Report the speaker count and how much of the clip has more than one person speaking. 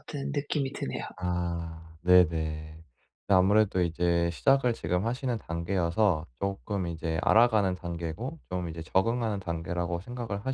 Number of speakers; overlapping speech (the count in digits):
2, no overlap